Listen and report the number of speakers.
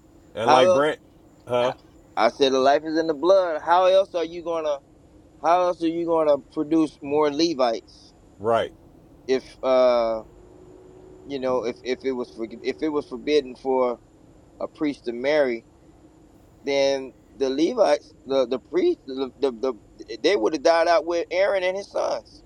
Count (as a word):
two